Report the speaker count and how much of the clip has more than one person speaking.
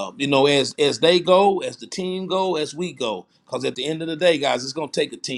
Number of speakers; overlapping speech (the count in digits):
1, no overlap